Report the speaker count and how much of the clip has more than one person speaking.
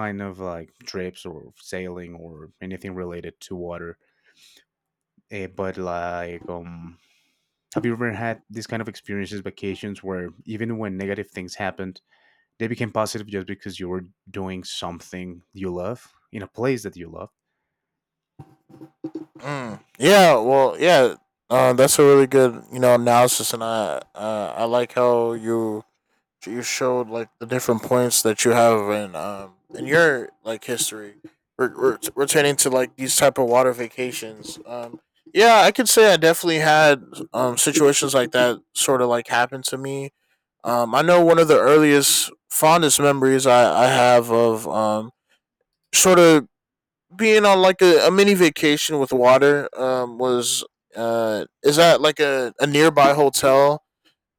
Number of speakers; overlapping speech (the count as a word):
two, no overlap